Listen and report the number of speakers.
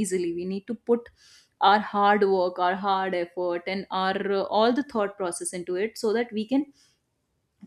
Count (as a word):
one